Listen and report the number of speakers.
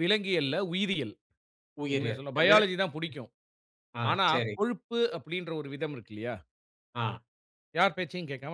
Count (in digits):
2